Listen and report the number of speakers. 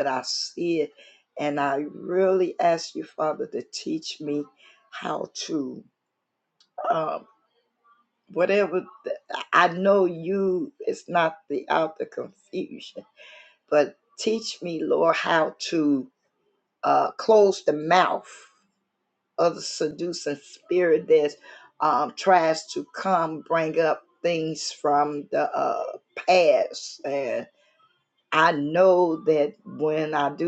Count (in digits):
1